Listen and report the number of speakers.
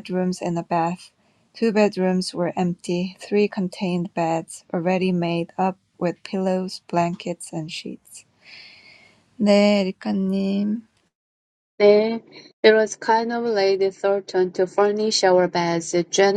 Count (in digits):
2